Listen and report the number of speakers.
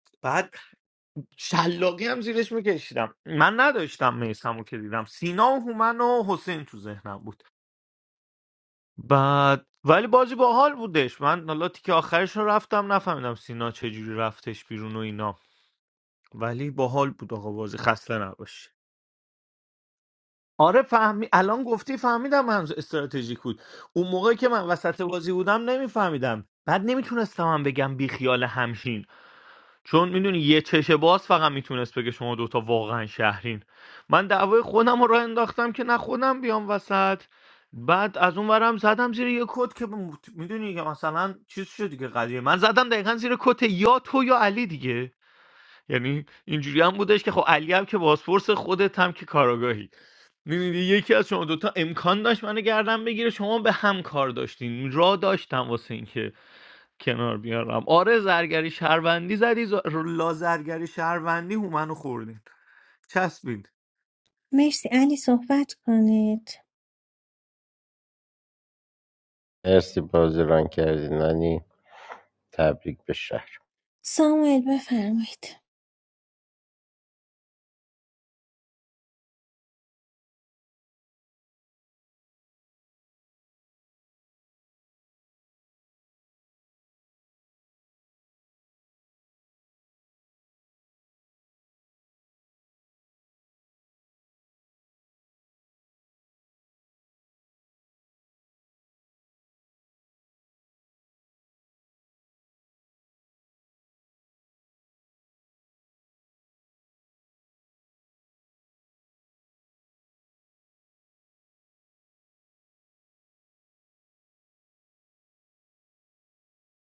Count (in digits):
3